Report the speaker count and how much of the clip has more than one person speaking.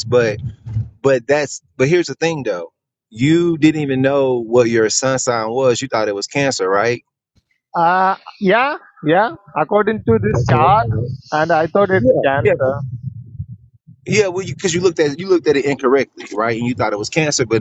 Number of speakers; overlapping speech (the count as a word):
two, about 4%